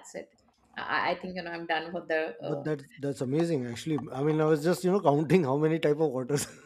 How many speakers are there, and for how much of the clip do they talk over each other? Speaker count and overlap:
2, about 3%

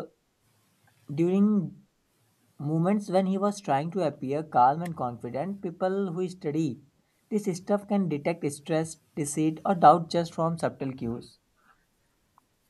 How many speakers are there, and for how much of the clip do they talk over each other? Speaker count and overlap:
1, no overlap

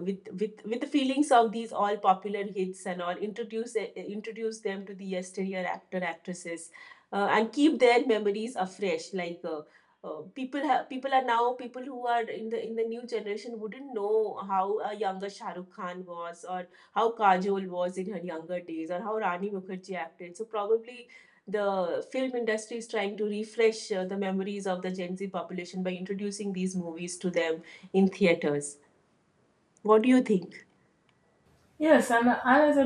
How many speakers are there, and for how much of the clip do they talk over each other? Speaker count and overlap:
2, no overlap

